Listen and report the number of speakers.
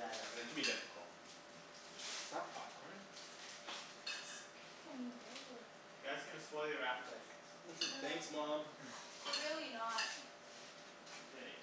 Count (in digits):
3